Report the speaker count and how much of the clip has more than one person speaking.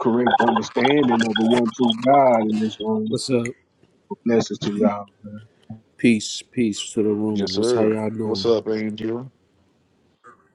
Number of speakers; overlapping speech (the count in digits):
3, about 8%